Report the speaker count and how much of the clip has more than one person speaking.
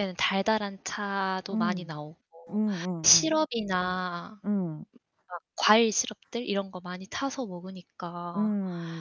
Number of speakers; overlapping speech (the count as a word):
two, about 8%